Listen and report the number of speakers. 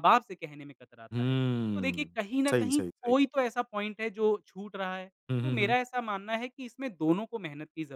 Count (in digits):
2